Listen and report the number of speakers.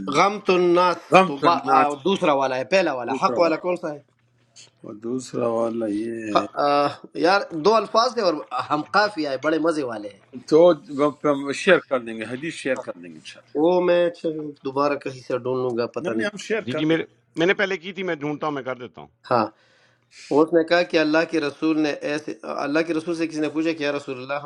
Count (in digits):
3